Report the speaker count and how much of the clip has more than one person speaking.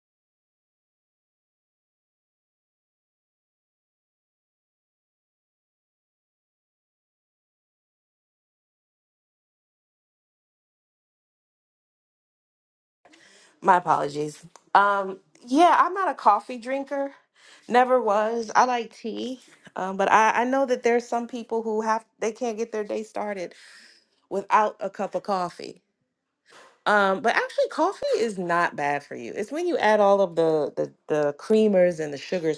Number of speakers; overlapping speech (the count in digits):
1, no overlap